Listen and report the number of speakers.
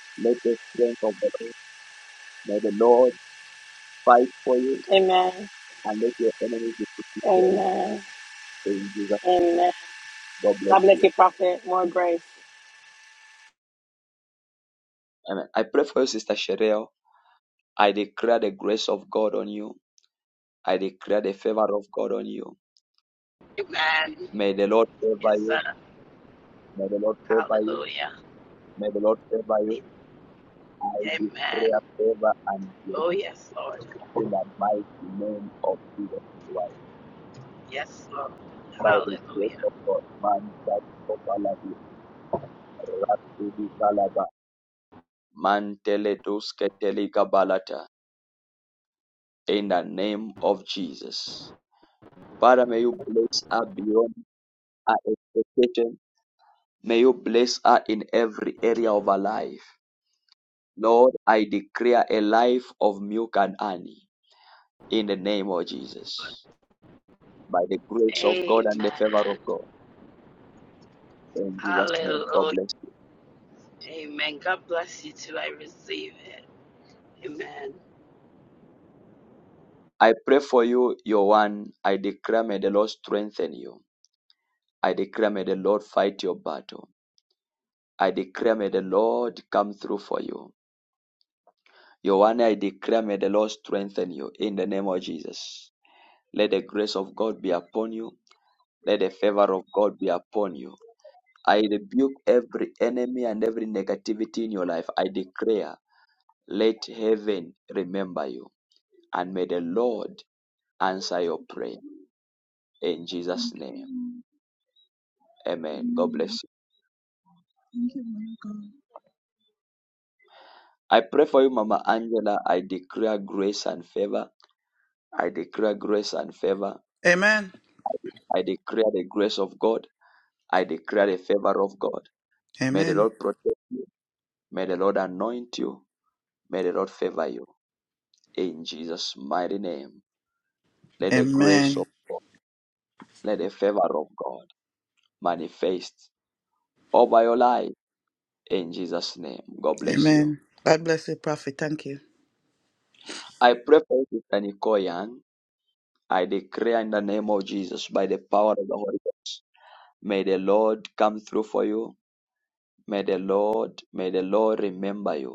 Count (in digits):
5